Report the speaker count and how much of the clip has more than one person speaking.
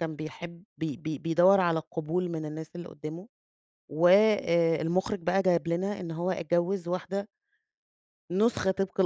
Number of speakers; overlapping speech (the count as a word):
one, no overlap